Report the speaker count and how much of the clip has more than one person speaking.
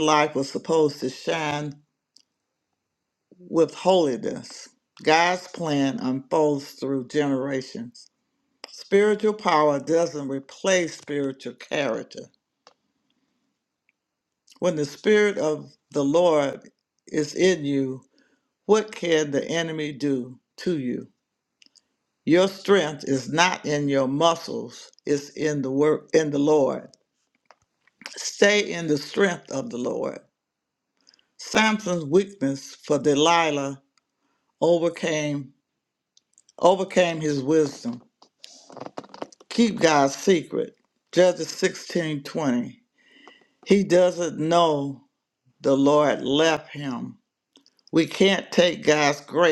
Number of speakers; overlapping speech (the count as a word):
one, no overlap